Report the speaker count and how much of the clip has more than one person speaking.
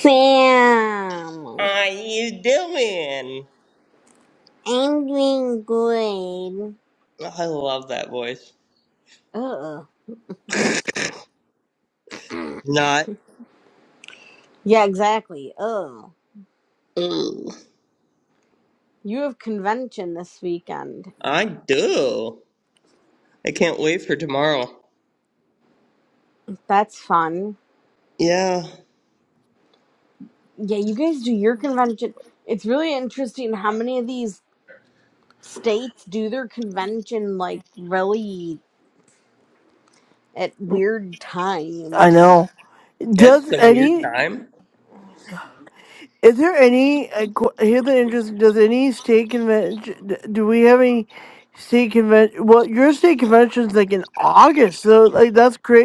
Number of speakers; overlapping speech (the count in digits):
3, about 2%